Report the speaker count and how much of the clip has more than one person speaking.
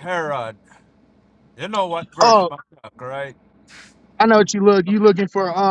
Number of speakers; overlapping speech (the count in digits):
2, about 5%